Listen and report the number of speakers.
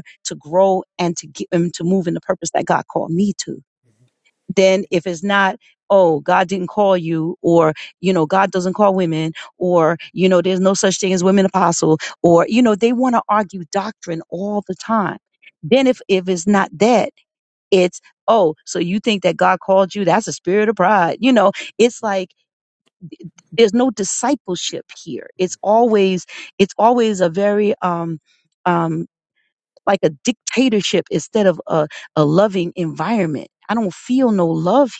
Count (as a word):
one